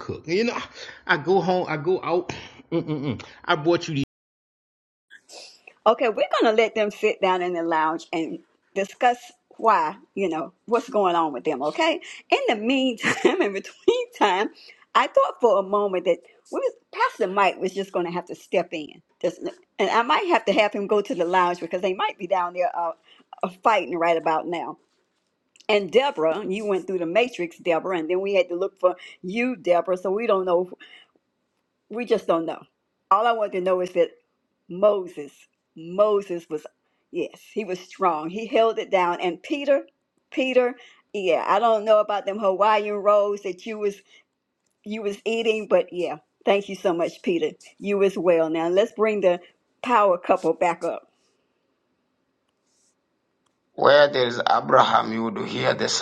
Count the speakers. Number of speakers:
three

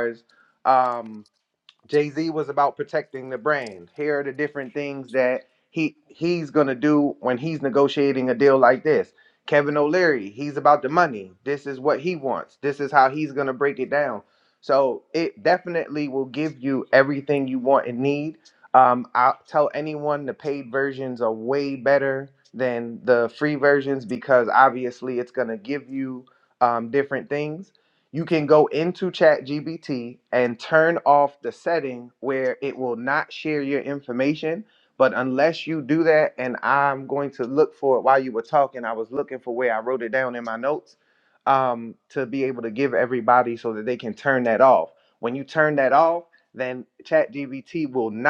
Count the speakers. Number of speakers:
one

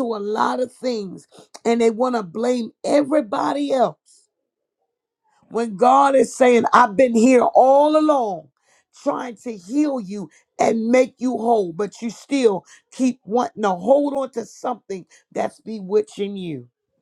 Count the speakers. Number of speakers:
one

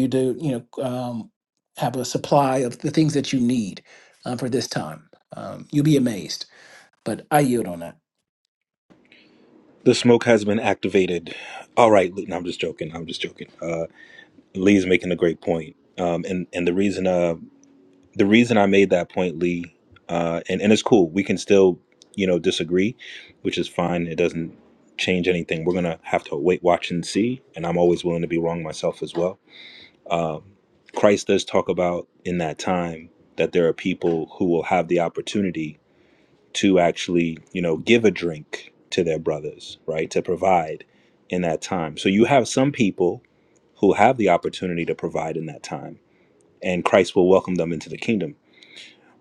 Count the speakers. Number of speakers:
two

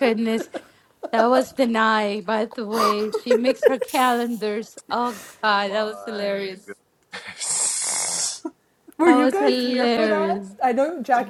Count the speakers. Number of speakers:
three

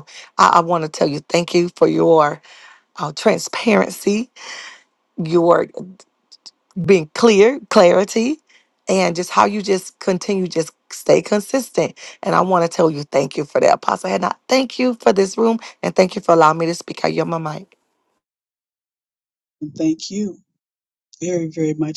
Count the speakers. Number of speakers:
two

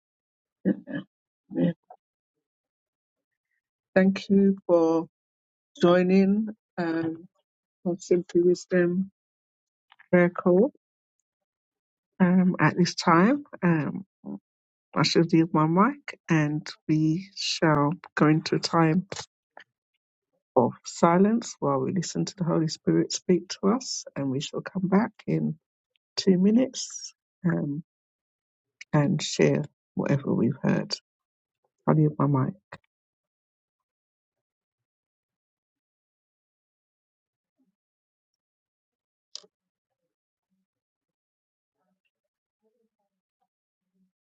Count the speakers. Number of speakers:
one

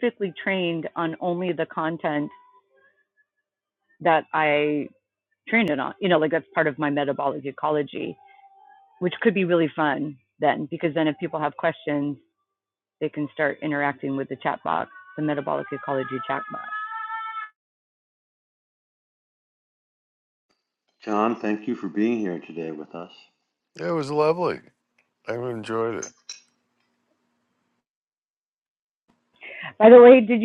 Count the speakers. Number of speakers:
three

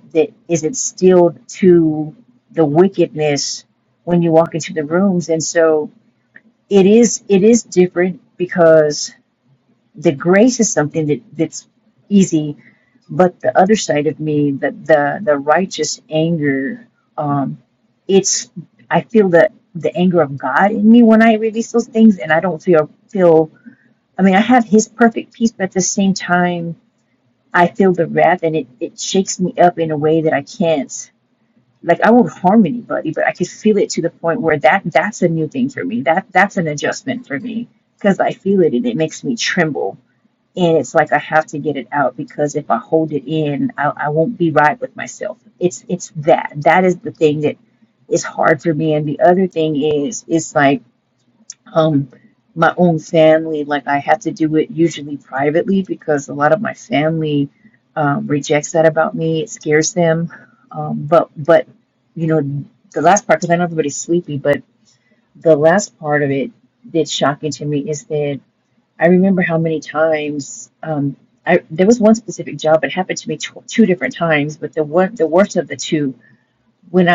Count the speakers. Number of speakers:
one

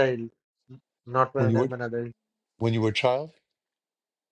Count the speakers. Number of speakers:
two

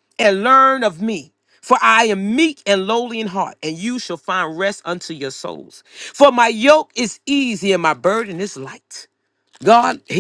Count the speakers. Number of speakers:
one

